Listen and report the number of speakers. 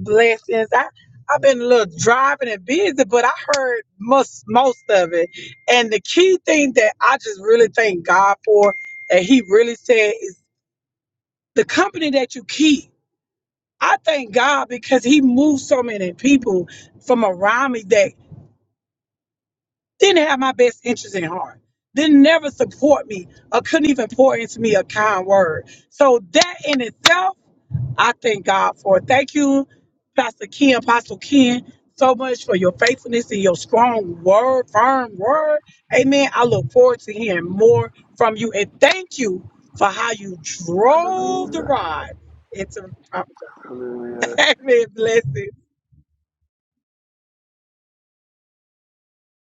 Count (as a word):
two